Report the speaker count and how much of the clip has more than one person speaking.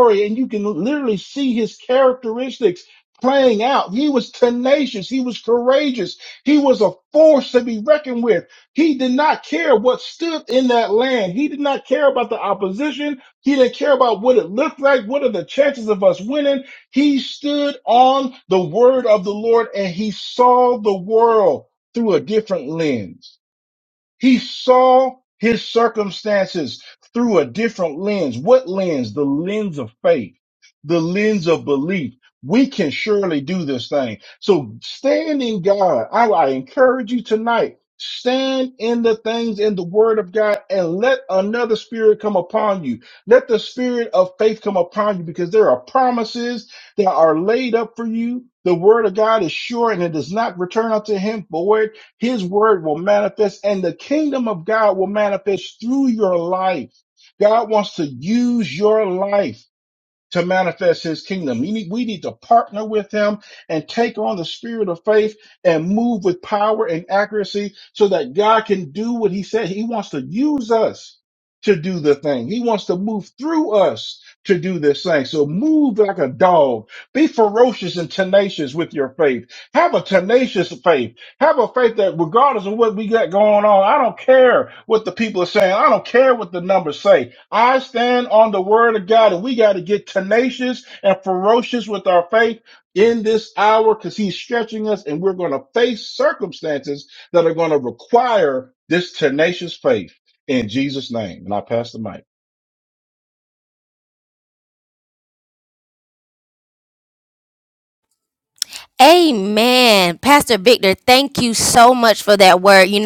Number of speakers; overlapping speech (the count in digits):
2, no overlap